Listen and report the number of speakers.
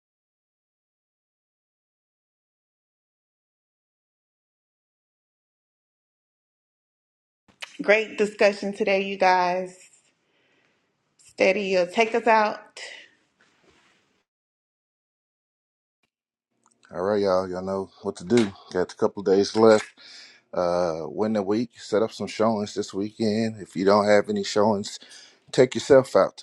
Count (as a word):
two